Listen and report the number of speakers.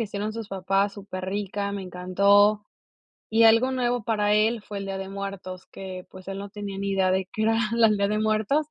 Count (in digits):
1